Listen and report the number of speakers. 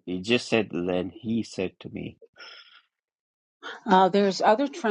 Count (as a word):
two